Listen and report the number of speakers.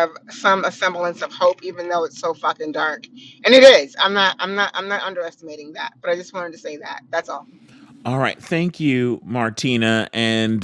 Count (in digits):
2